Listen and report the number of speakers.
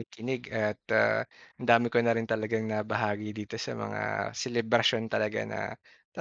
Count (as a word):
one